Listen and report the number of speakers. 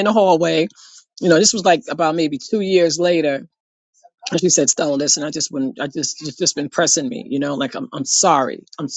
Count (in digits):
1